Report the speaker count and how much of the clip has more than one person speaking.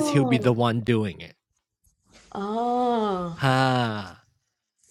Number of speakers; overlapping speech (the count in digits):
2, about 7%